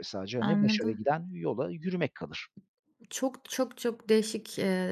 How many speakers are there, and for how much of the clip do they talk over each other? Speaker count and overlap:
two, about 12%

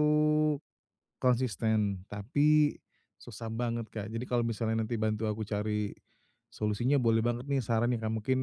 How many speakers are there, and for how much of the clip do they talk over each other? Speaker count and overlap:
one, no overlap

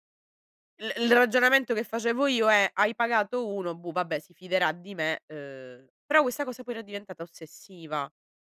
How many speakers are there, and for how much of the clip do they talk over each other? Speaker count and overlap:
one, no overlap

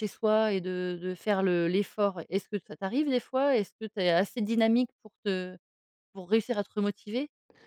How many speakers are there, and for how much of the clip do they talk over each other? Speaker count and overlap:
one, no overlap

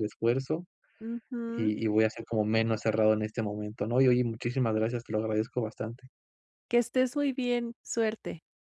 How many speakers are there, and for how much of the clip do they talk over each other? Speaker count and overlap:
two, about 3%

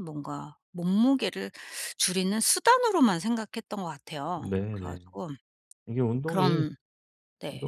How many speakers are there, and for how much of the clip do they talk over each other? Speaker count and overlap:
two, about 15%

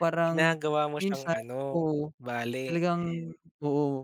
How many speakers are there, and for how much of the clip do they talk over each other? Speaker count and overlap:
two, about 23%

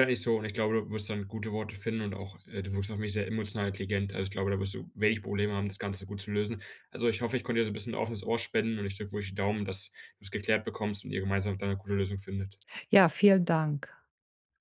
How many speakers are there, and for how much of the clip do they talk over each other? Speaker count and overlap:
two, no overlap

